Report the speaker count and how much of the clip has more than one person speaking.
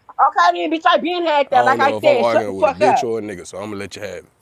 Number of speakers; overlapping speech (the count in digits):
2, about 36%